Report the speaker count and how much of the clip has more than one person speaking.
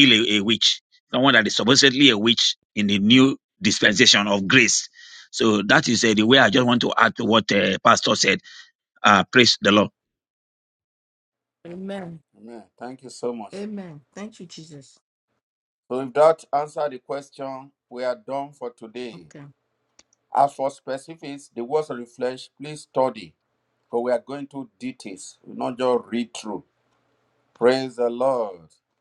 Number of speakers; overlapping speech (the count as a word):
three, under 1%